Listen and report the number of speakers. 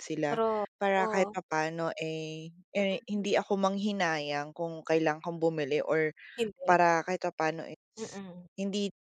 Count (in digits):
2